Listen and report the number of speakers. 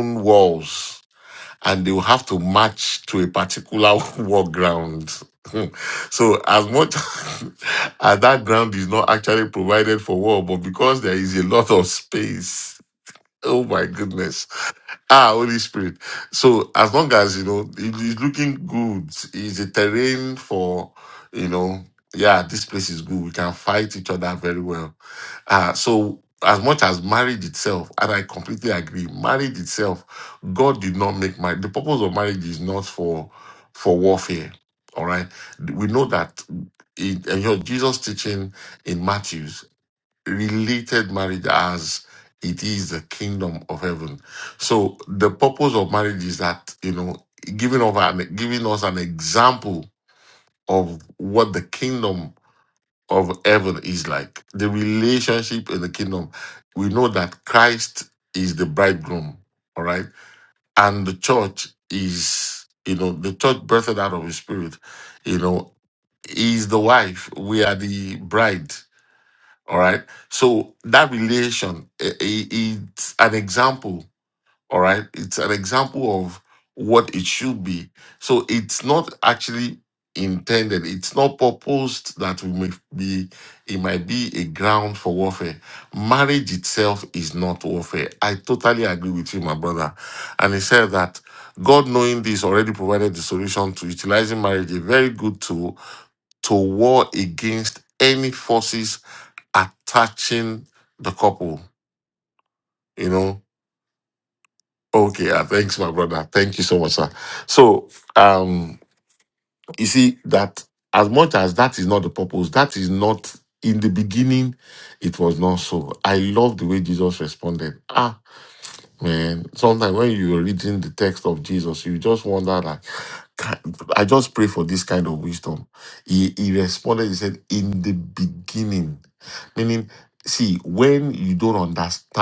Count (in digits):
1